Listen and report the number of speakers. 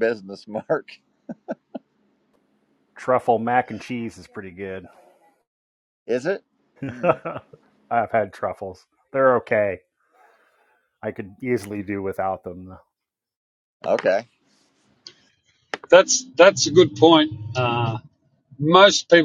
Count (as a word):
three